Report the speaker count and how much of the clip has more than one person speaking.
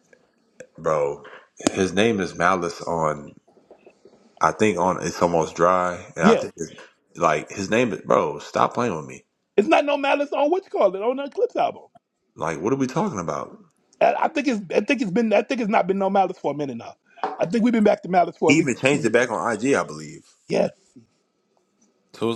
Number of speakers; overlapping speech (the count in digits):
2, about 4%